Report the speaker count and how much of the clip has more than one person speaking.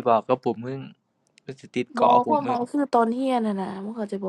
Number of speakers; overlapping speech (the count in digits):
2, about 14%